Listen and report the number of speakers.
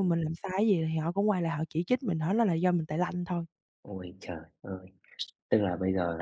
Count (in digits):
2